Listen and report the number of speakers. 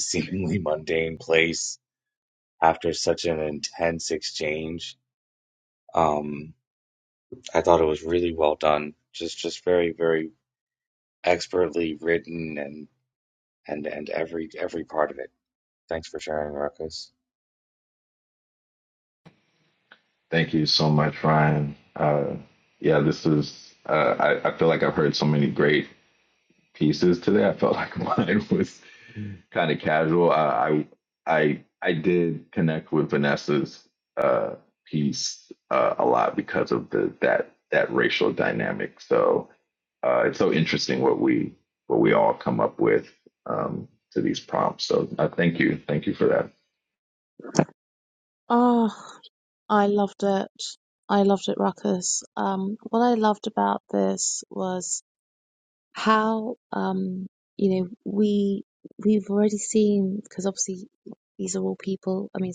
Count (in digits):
3